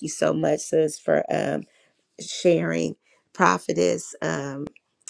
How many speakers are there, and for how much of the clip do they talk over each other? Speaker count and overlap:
1, no overlap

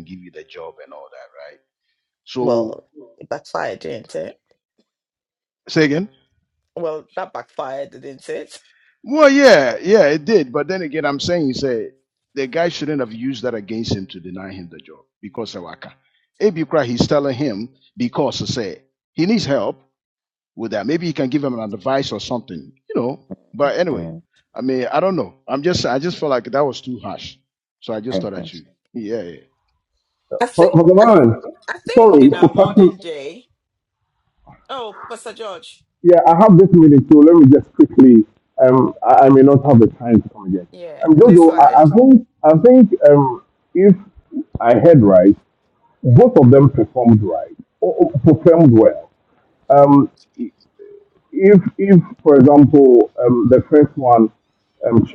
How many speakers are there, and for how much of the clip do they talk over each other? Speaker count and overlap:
3, about 6%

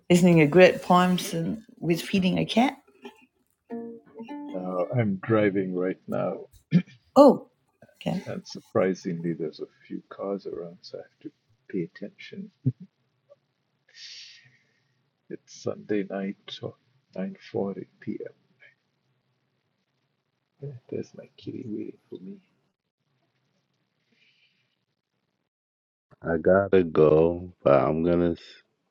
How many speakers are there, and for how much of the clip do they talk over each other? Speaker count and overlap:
3, no overlap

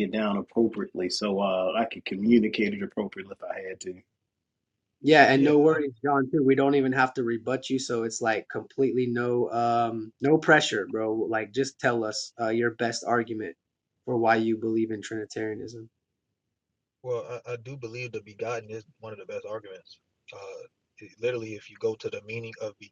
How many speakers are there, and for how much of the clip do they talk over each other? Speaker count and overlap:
3, about 2%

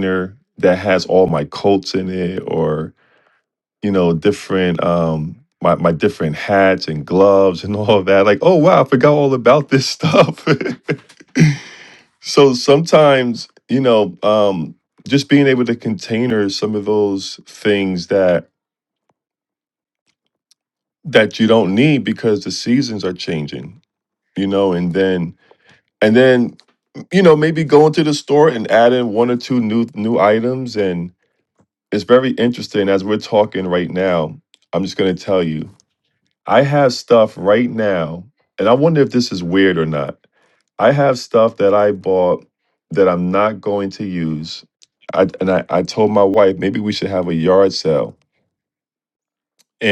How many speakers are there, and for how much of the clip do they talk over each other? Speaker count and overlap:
1, no overlap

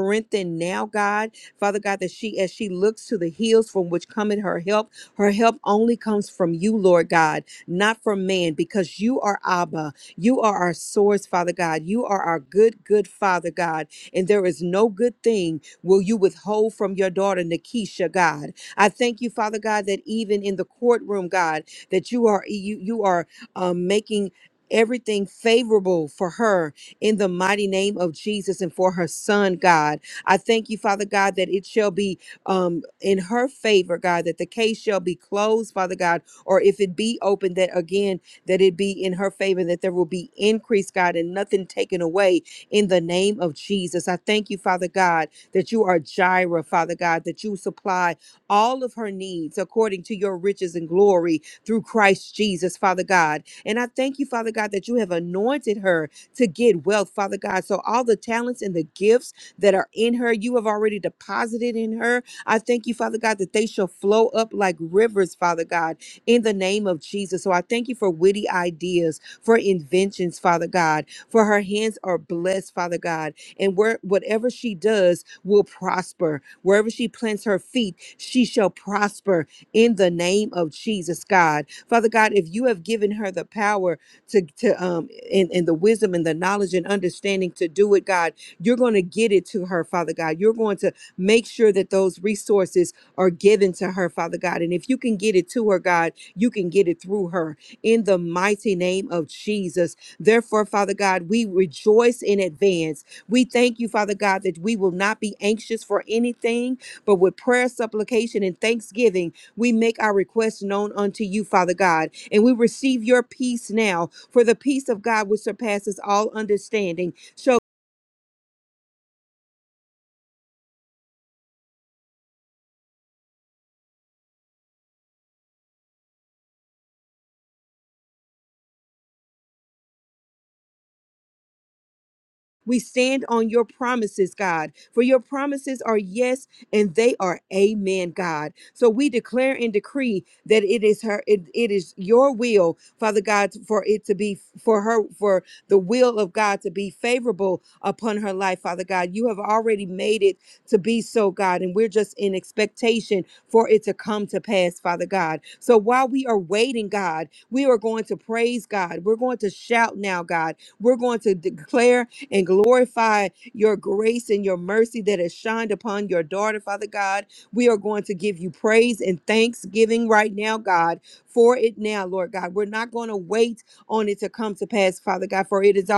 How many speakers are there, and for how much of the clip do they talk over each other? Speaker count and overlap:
1, no overlap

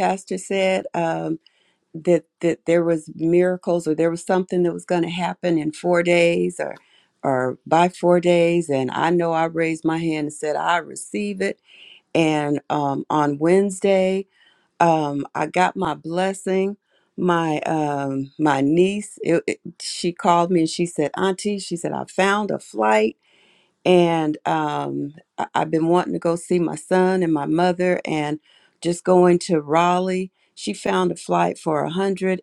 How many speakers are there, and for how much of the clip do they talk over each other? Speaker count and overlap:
1, no overlap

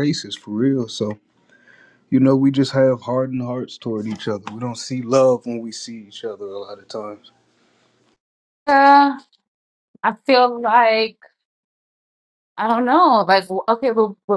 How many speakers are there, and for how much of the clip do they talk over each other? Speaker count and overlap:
2, no overlap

